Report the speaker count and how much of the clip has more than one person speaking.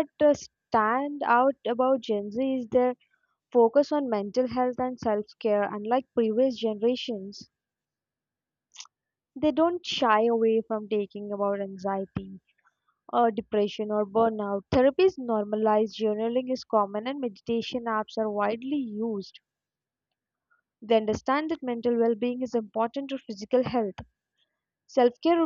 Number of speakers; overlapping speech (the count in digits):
1, no overlap